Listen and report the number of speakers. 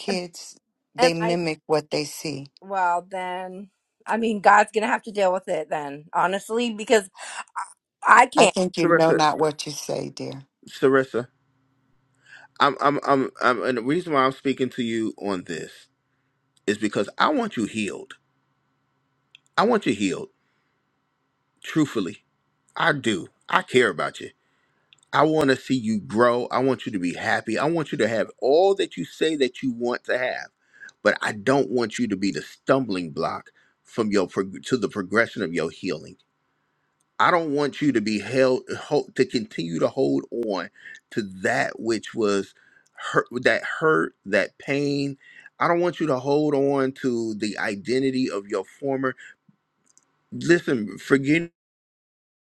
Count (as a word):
three